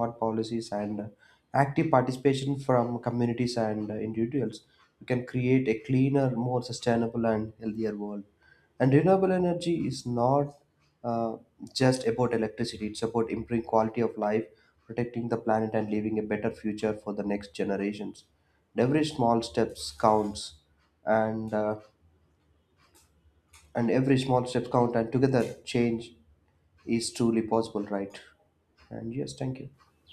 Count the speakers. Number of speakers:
1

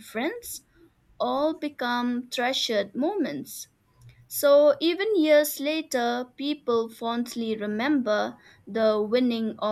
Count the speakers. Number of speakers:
1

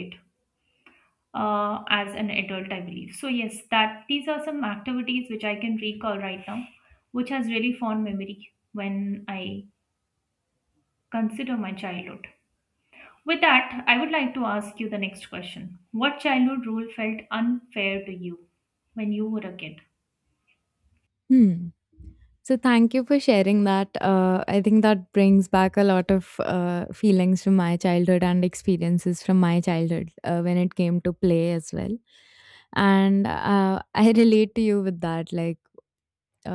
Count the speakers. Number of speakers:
2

